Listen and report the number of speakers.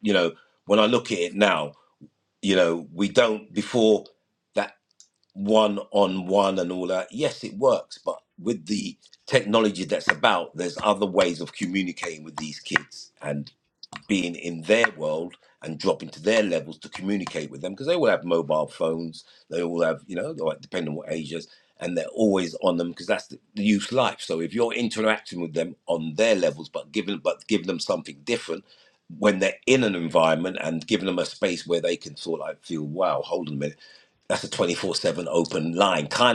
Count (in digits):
1